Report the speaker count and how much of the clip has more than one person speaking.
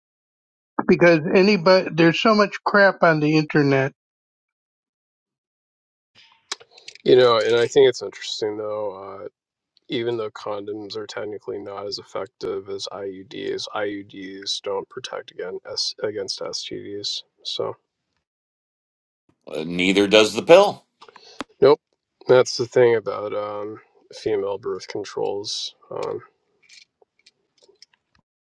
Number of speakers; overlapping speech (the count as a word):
three, no overlap